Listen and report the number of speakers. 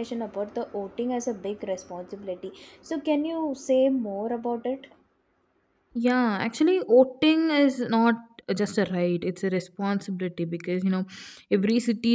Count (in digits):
2